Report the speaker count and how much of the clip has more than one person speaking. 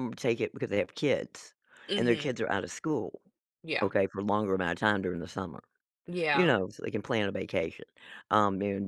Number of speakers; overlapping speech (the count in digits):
2, about 7%